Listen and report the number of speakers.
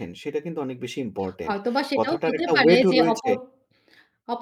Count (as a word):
two